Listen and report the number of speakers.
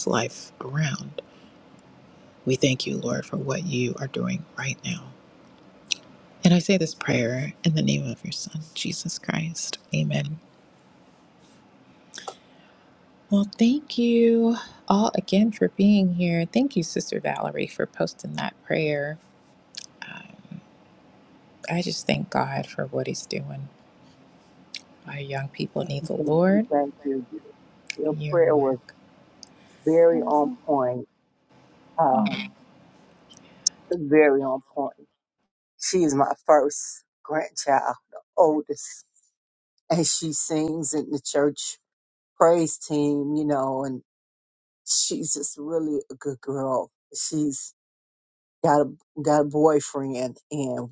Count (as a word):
two